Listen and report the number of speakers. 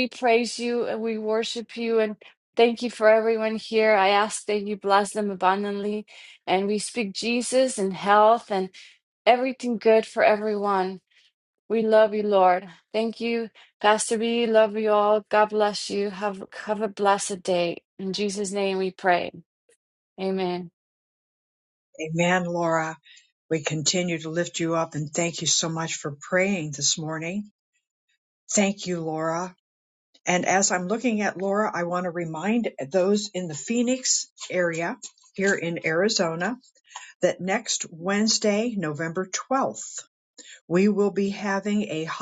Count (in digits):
2